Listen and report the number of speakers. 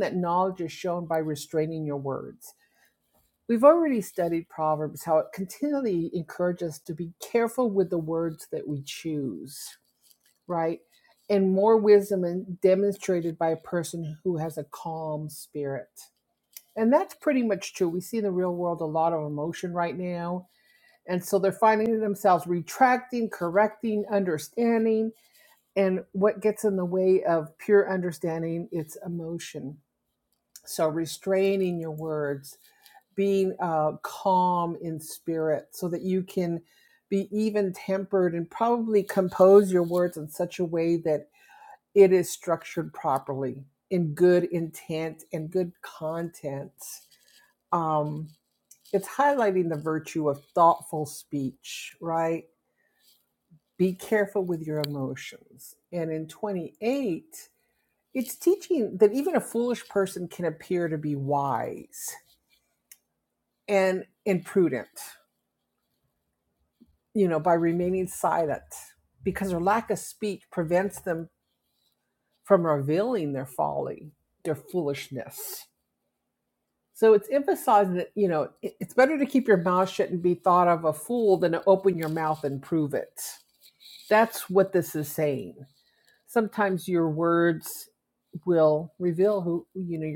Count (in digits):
1